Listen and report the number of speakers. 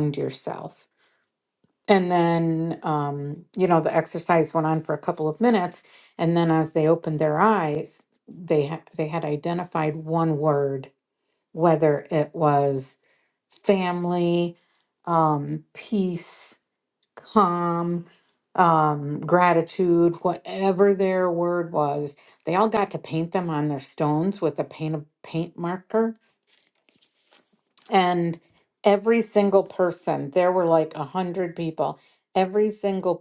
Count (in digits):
1